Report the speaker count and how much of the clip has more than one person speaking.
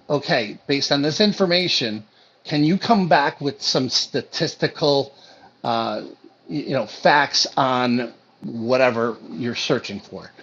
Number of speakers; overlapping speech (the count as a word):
one, no overlap